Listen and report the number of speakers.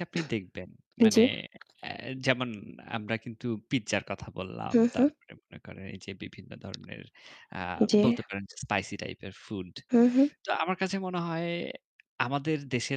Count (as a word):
two